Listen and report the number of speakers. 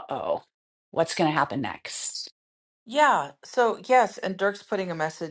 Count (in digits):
2